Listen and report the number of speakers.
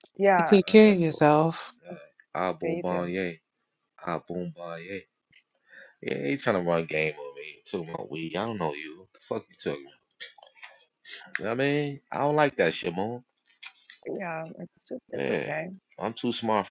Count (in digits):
3